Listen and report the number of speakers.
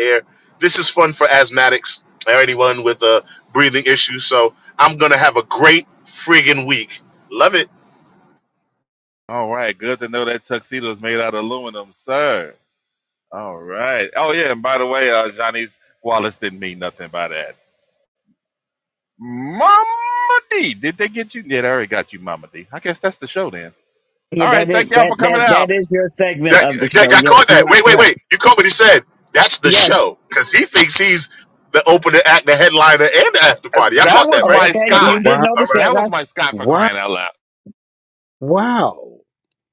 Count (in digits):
4